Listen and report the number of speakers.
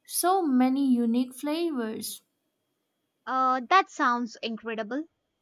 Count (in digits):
2